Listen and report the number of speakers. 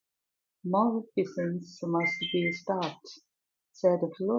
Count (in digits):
1